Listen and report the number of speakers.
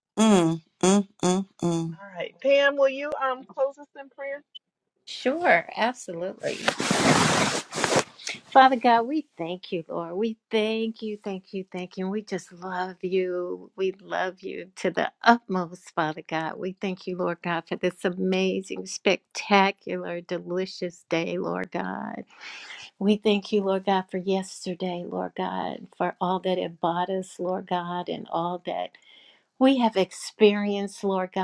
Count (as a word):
three